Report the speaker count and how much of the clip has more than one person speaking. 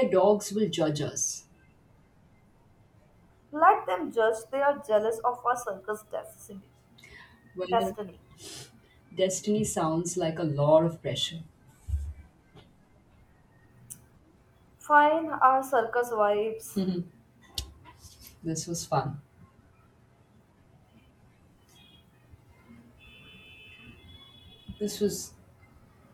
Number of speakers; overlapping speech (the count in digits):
2, about 1%